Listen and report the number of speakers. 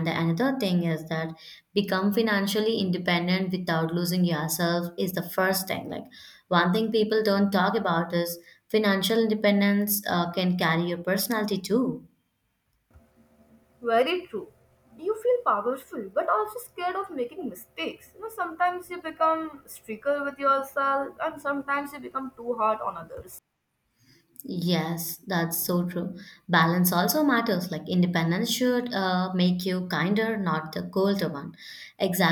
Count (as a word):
two